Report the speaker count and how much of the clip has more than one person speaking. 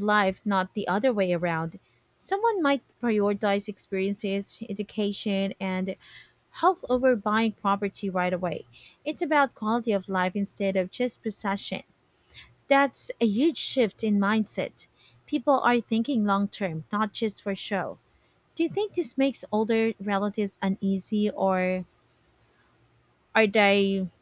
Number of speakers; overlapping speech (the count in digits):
1, no overlap